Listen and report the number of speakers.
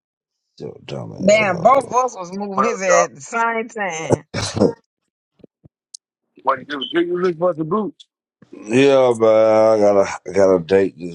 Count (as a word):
three